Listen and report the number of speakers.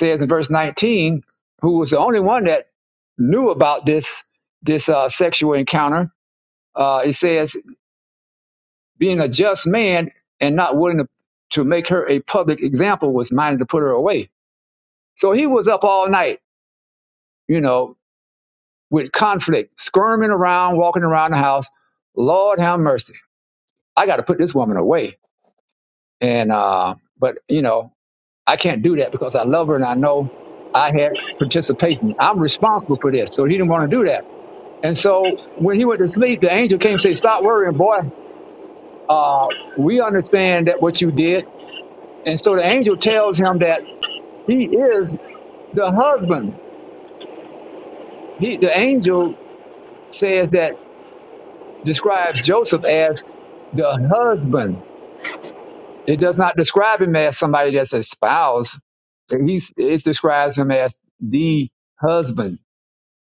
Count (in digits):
1